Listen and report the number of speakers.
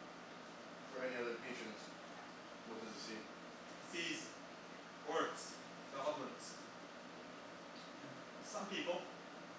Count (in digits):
2